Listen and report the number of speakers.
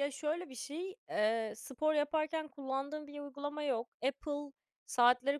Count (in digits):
1